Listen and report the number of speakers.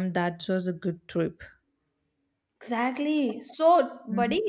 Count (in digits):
2